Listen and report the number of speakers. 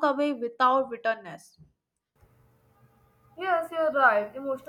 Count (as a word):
two